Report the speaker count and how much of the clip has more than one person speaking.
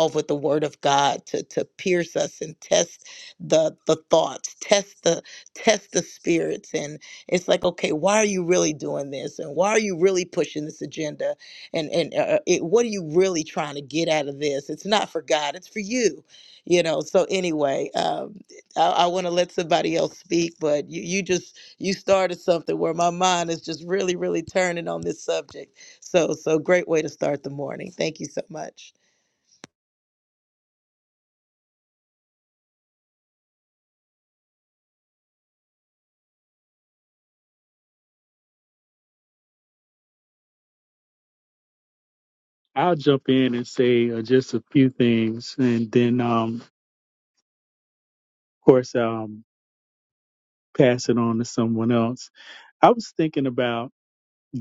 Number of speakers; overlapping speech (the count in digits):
2, no overlap